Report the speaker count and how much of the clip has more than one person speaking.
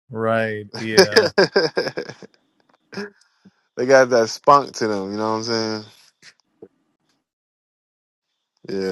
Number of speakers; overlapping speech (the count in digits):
2, no overlap